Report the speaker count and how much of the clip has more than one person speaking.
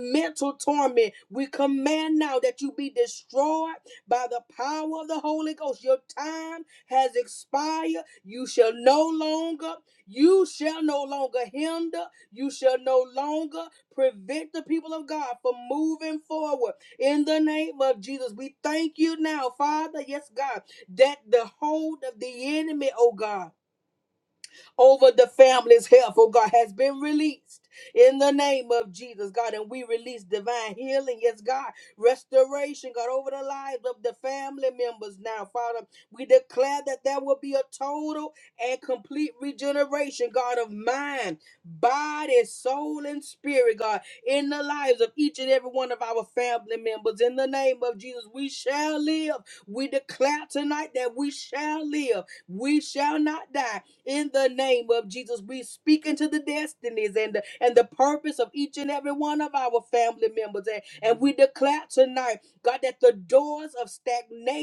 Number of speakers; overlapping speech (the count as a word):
one, no overlap